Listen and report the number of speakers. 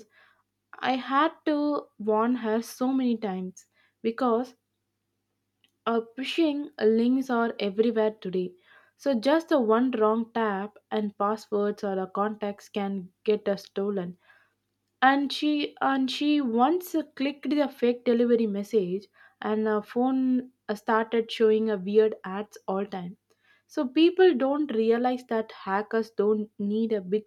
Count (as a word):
one